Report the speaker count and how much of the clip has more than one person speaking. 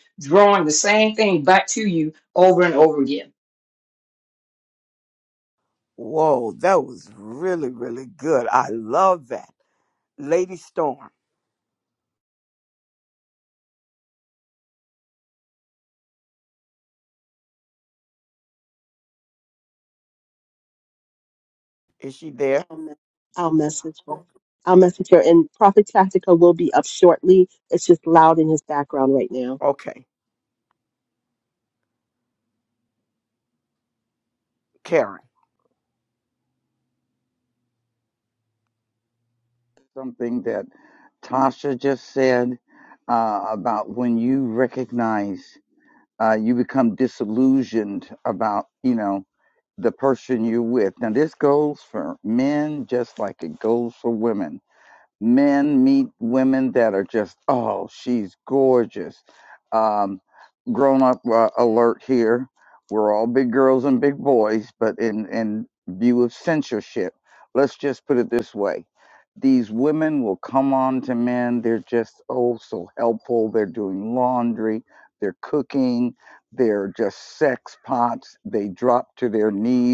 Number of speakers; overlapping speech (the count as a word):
four, under 1%